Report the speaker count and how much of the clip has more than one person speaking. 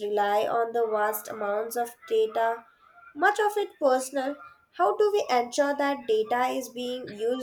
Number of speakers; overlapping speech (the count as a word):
one, no overlap